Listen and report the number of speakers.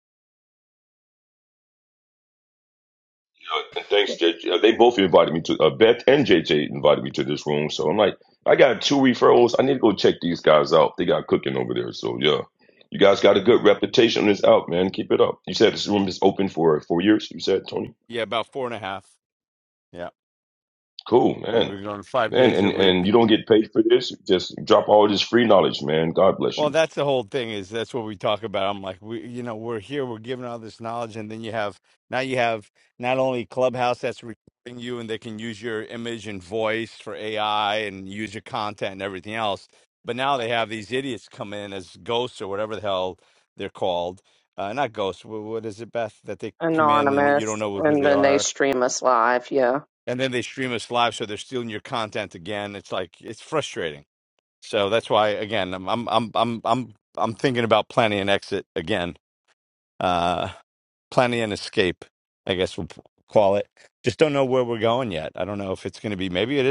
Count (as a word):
three